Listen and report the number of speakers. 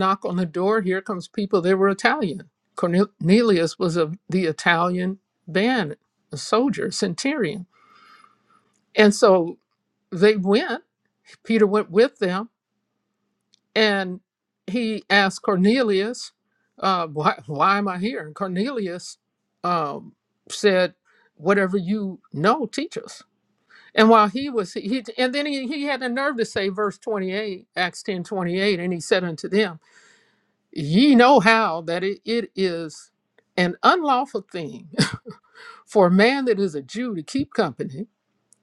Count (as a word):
one